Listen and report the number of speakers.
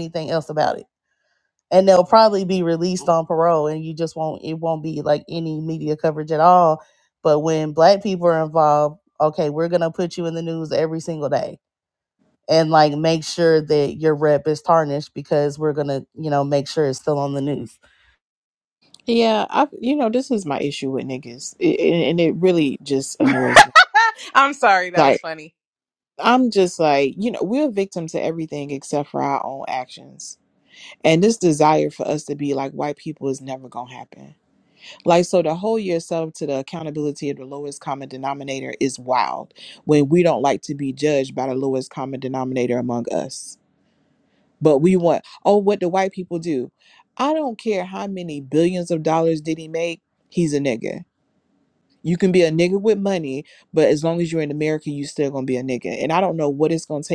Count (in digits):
3